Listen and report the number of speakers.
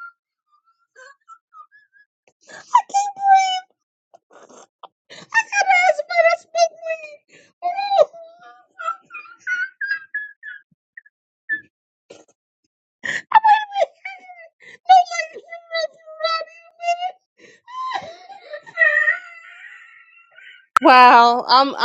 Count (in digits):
2